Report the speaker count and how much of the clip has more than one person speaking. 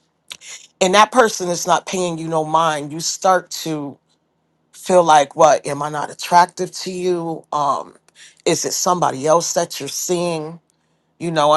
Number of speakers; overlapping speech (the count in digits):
1, no overlap